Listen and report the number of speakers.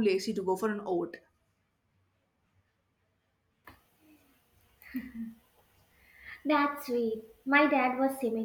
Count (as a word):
two